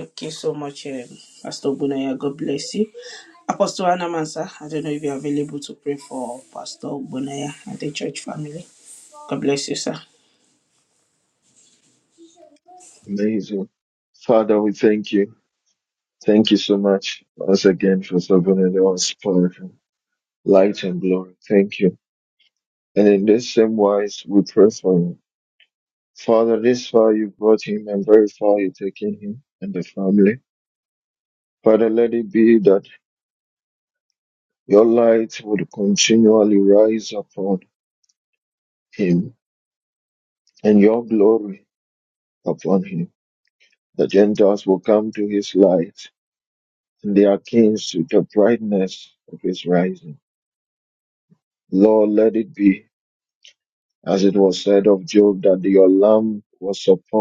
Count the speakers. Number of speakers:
2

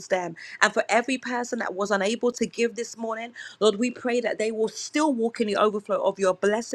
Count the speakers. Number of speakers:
1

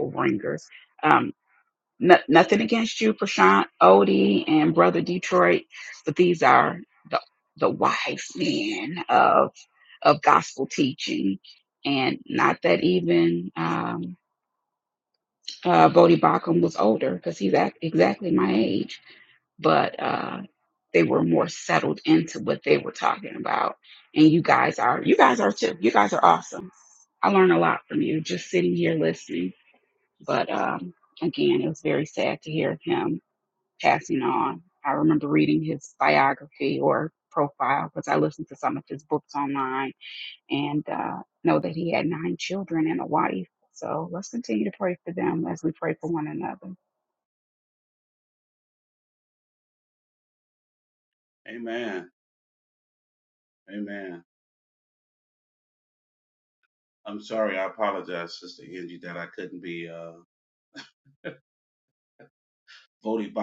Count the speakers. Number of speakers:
2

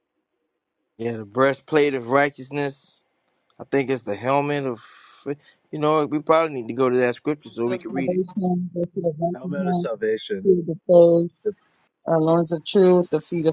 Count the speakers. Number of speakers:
3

